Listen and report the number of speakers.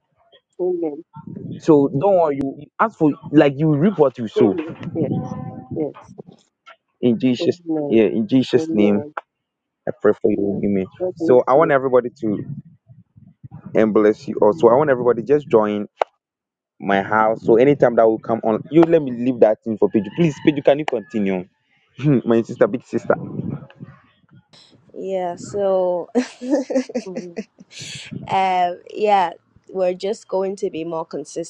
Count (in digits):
3